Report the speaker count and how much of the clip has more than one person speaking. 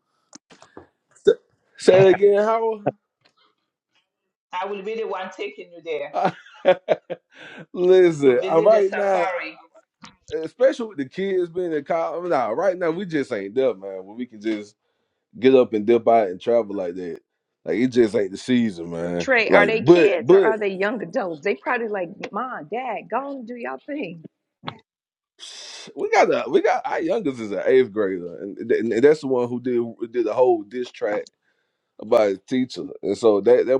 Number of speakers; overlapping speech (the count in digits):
3, about 8%